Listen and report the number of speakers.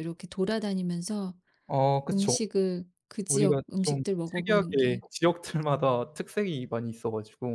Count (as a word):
two